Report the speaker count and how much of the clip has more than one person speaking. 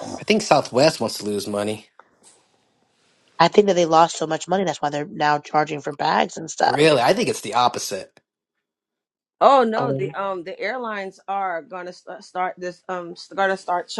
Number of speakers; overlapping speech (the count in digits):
3, about 4%